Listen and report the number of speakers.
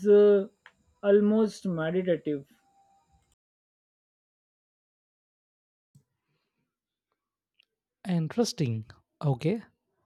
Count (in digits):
2